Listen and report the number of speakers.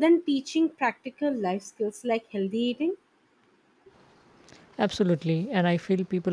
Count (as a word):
two